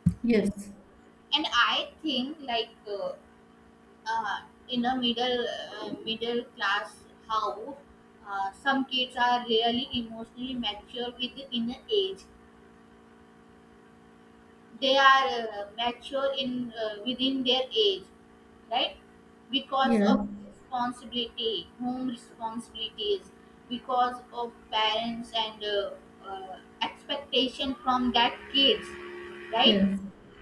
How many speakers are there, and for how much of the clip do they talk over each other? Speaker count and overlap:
2, about 2%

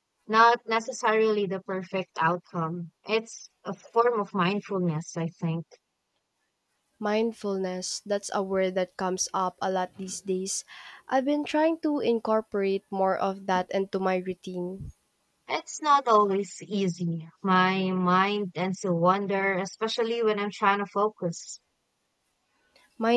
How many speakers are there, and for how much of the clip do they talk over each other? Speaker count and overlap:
2, no overlap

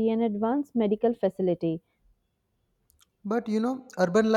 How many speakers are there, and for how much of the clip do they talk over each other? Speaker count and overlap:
2, no overlap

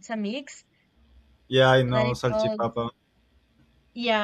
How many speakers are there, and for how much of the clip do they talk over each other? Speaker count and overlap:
2, about 17%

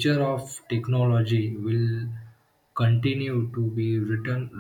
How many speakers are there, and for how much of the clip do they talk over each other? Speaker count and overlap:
1, no overlap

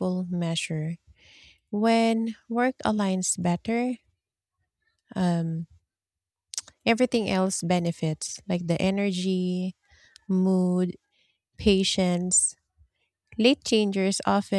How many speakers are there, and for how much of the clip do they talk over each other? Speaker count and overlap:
1, no overlap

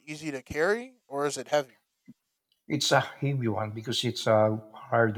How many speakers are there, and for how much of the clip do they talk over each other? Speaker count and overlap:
2, no overlap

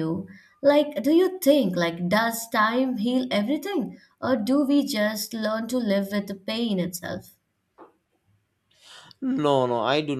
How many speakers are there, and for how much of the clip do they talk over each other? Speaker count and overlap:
2, no overlap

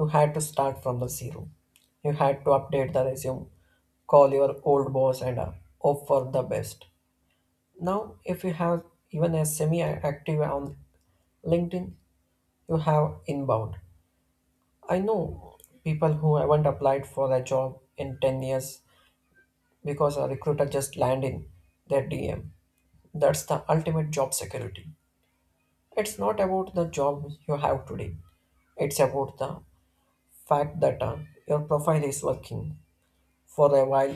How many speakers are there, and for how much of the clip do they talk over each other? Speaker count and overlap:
1, no overlap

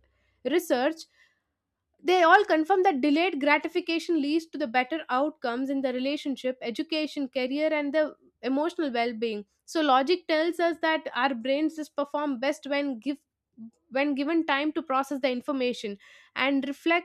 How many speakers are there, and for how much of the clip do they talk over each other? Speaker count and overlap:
1, no overlap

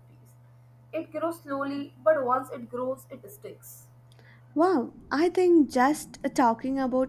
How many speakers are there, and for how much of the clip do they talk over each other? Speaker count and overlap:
2, no overlap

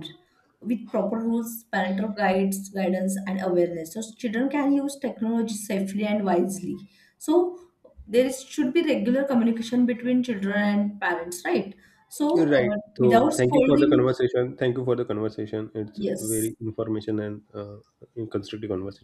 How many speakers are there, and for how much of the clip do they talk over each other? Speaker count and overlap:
2, about 11%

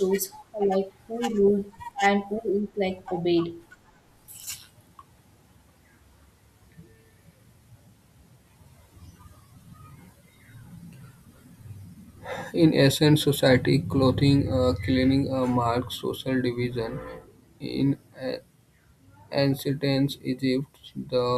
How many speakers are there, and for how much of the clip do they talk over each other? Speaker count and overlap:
2, no overlap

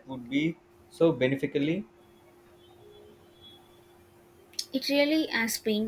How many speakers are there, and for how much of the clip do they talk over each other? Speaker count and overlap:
2, no overlap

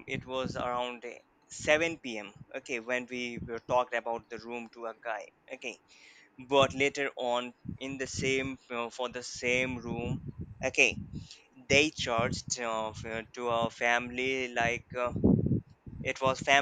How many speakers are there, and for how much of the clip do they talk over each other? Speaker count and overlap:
1, no overlap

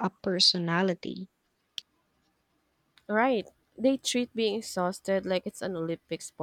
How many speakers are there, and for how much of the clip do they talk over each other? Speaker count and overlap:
2, no overlap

